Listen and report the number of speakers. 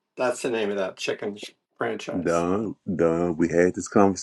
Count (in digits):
2